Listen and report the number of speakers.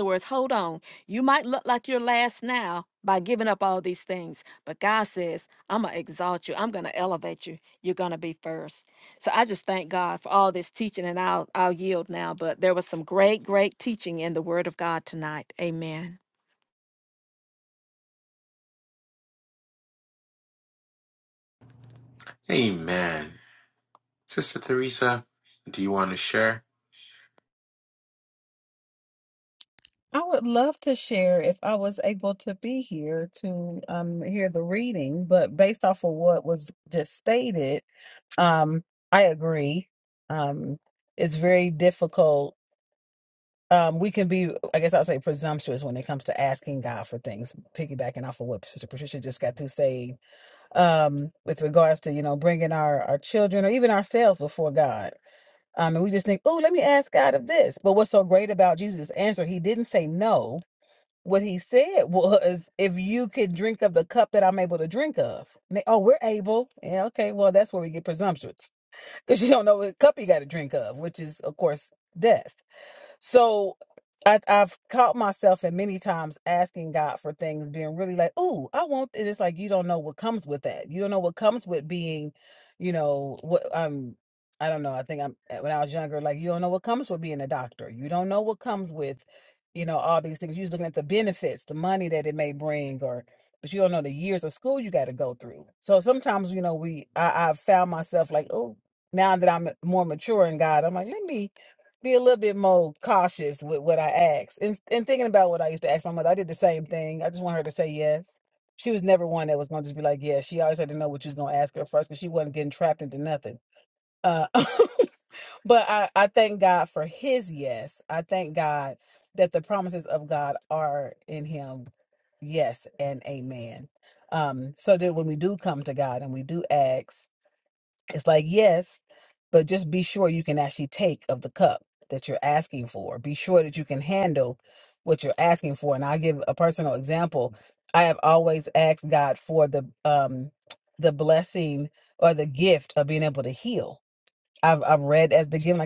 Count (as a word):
three